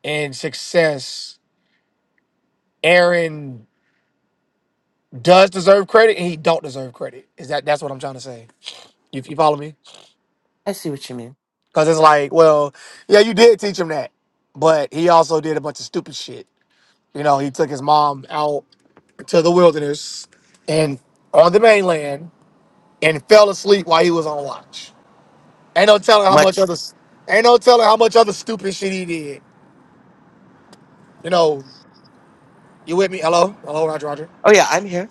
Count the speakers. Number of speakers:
2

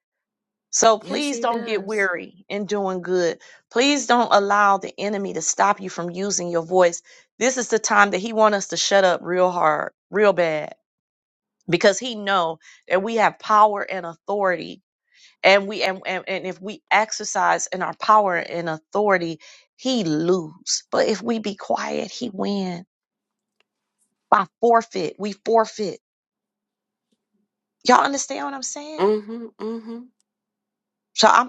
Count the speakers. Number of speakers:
2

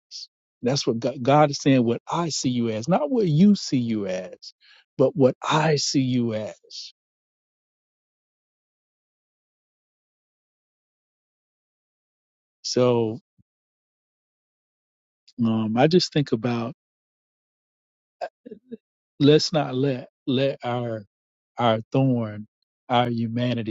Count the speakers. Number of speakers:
1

